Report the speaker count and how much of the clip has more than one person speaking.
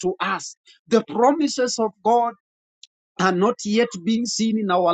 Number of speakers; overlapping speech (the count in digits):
1, no overlap